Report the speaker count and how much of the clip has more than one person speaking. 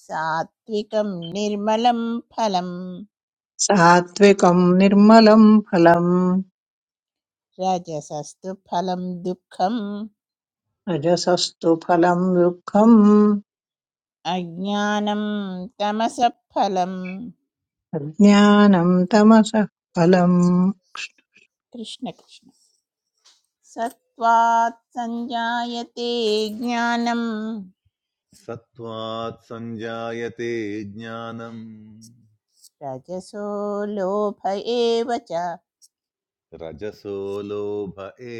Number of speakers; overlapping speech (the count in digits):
3, no overlap